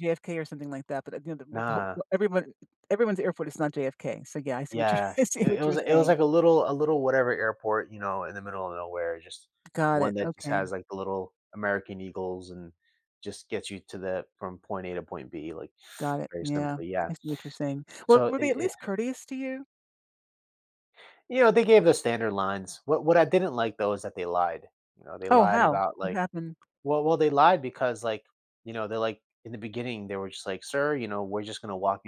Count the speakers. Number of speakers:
two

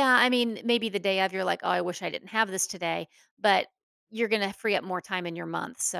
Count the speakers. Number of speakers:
one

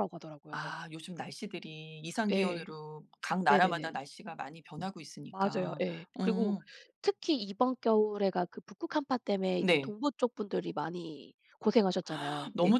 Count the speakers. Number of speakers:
two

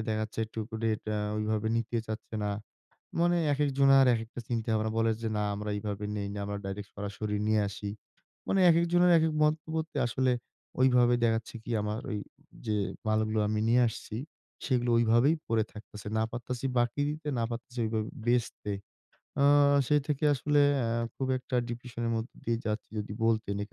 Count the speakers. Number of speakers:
one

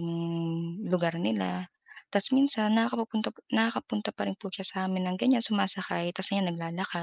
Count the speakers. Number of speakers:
one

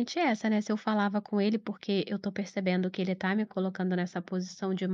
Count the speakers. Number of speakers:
one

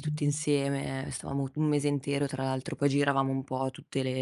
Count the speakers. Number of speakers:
one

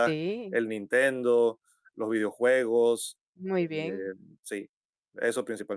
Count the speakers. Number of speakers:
two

